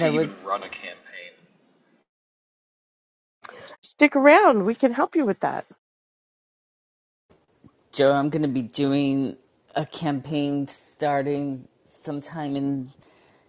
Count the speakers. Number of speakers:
3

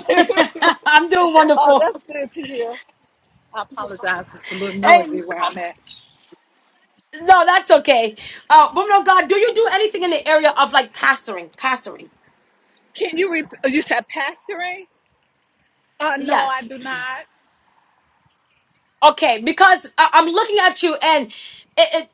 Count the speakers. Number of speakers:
2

